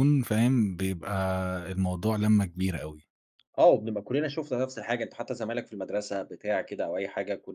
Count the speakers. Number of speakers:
2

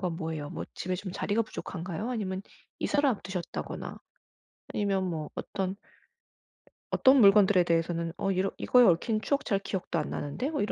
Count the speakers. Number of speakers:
1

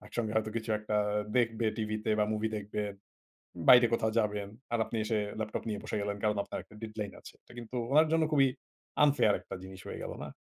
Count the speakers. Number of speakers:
1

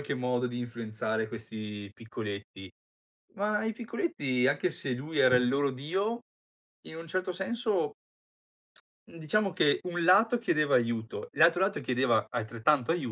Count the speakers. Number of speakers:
1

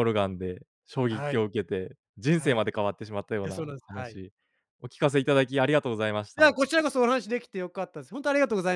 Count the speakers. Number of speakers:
2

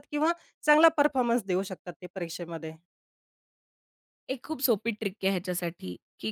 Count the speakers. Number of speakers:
2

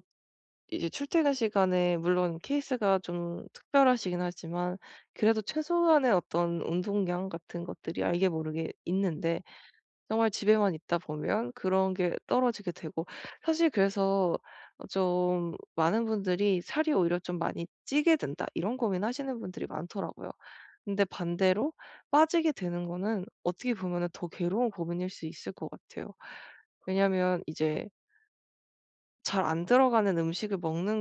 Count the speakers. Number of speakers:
1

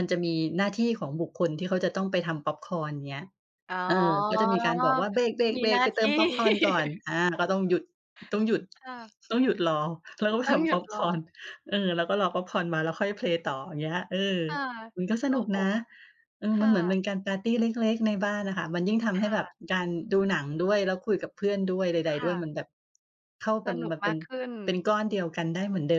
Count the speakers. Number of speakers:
2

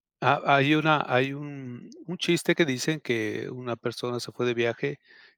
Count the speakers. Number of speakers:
1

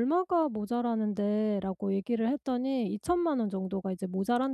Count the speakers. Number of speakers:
1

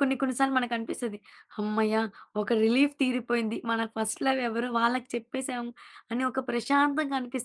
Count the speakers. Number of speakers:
1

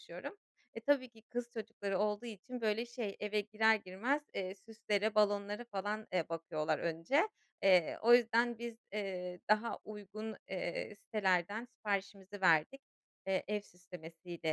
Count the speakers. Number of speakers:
1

